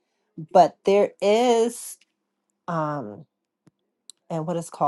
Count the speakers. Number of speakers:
1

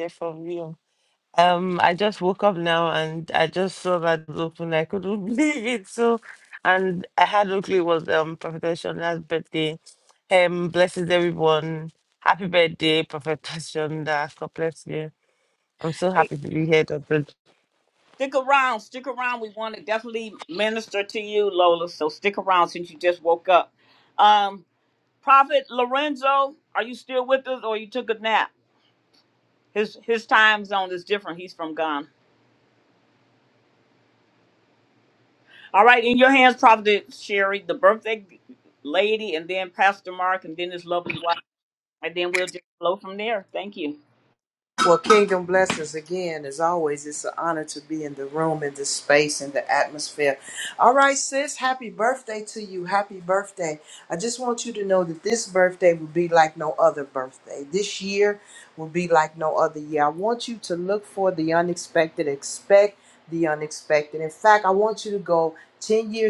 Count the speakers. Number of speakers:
3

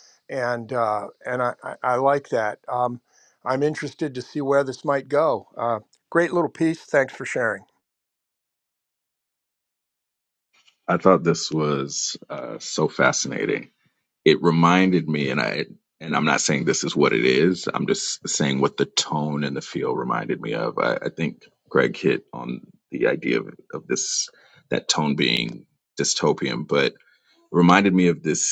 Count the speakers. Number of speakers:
2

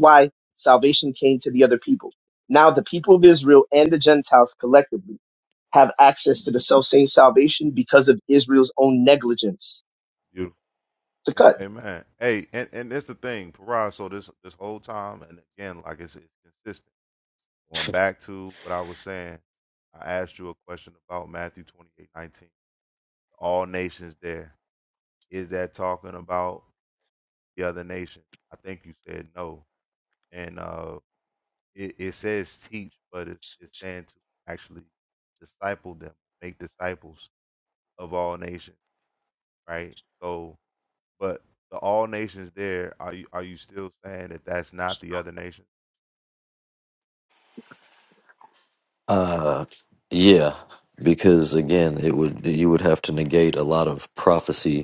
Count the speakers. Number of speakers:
3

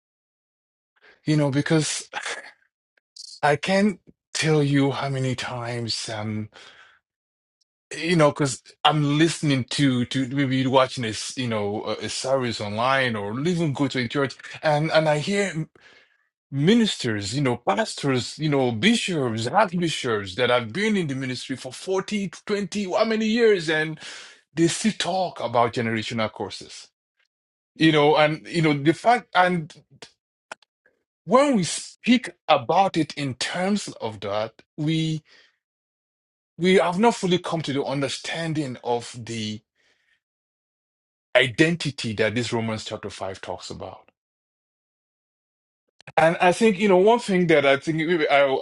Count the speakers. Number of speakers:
1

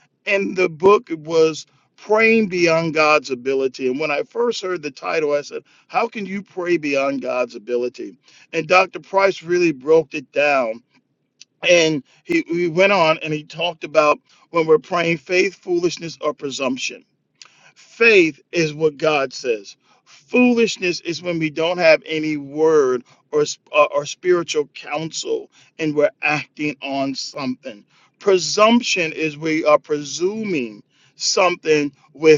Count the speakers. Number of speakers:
1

